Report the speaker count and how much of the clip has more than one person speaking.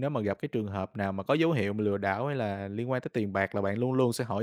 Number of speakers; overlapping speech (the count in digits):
1, no overlap